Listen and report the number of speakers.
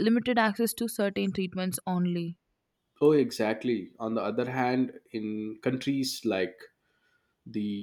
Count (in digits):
2